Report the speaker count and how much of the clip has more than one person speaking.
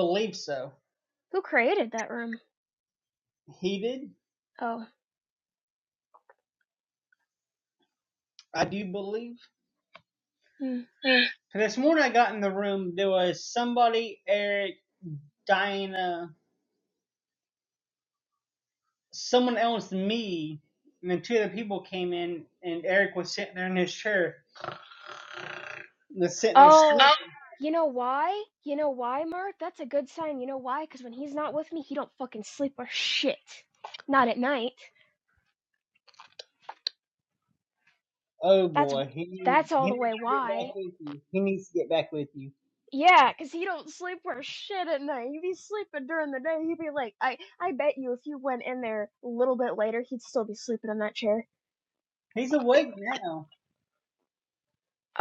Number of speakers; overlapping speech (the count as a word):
two, about 3%